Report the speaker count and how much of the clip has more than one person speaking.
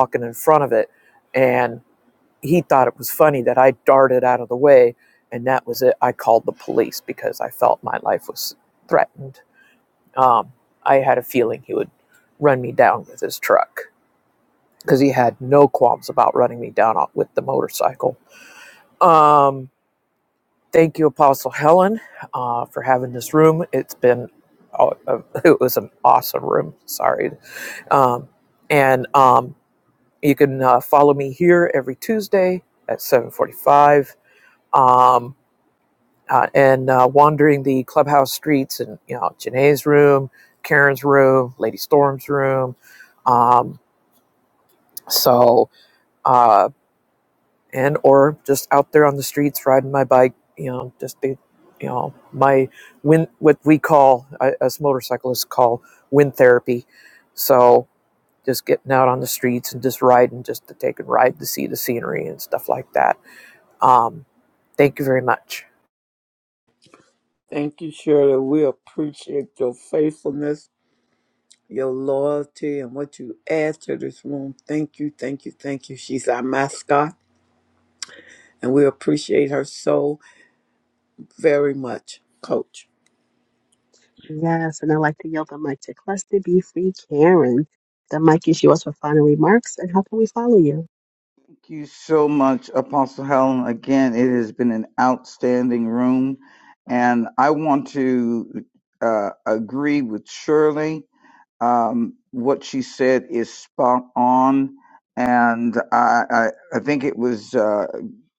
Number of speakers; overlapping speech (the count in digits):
4, no overlap